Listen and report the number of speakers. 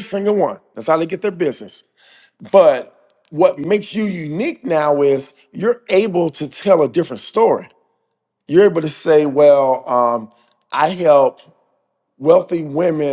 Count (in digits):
1